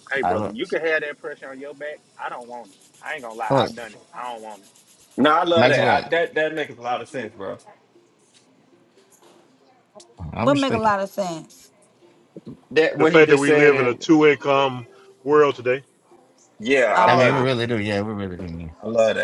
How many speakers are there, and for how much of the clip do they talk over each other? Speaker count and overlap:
five, about 17%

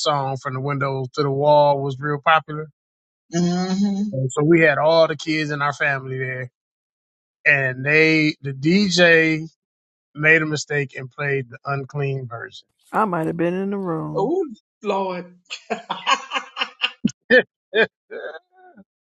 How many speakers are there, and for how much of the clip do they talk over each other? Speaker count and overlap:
three, about 1%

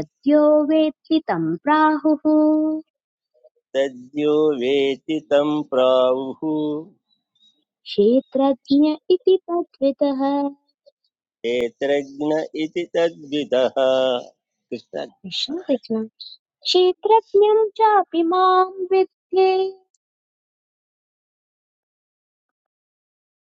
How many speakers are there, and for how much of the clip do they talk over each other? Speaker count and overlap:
two, no overlap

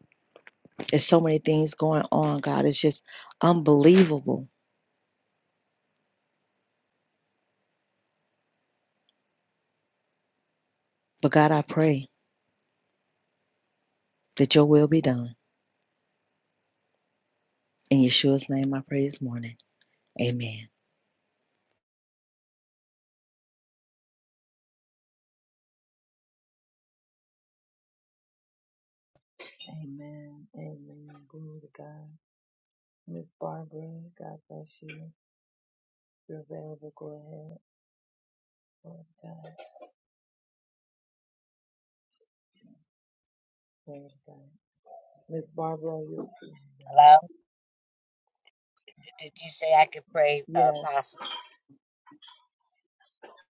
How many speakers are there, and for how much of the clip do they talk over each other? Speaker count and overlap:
three, about 1%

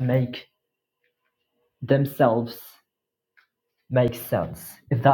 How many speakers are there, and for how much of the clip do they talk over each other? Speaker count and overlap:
one, no overlap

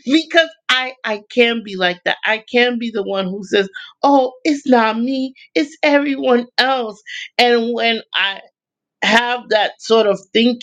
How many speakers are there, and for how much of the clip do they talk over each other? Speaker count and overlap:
one, no overlap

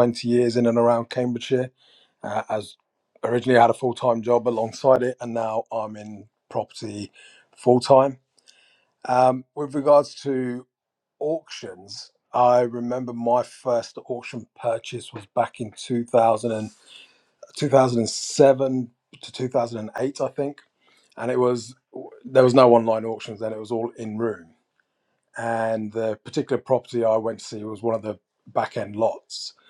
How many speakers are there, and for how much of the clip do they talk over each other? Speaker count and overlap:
one, no overlap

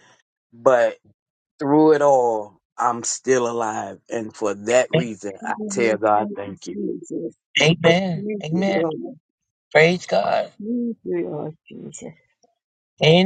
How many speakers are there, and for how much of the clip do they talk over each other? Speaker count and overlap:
three, about 15%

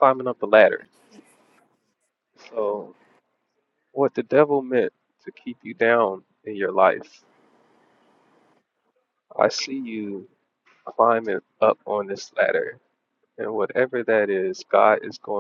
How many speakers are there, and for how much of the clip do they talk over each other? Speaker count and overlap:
one, no overlap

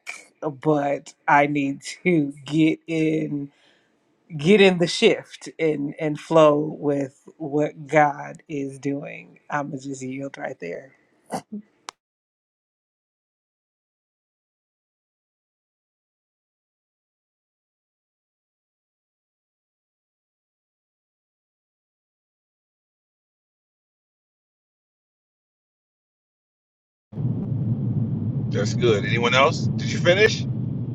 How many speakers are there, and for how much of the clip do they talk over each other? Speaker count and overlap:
two, no overlap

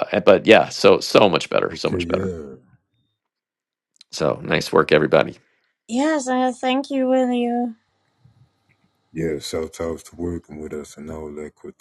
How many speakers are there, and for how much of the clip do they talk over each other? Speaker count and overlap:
three, about 5%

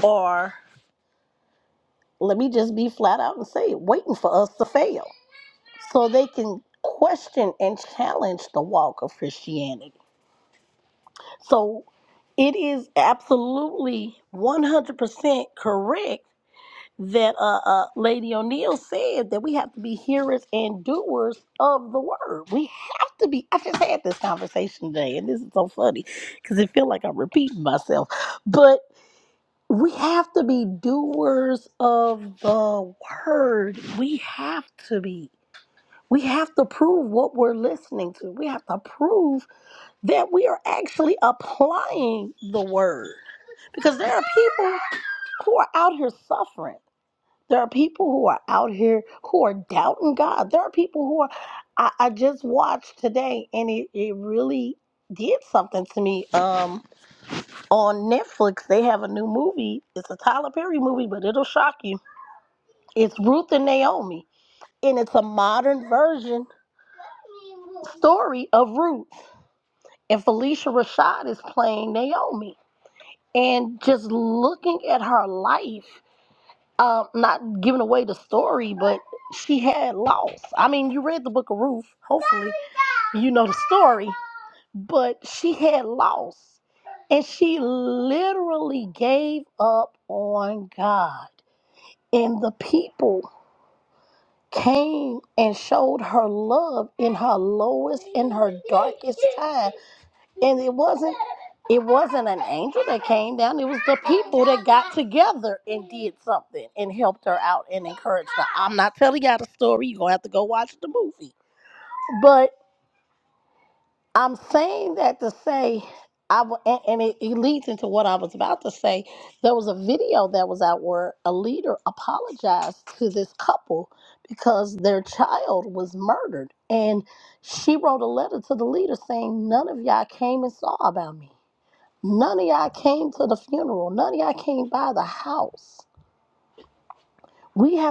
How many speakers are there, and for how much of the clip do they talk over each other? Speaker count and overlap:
one, no overlap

